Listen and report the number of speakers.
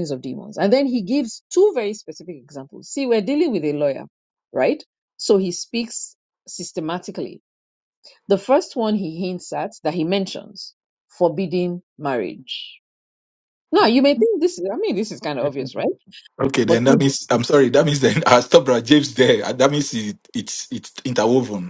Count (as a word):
two